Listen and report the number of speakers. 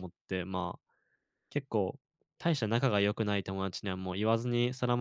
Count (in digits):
1